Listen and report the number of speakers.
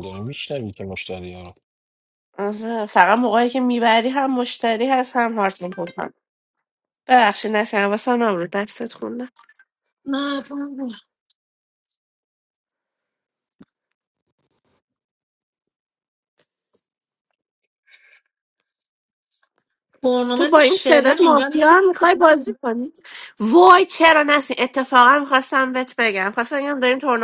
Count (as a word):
three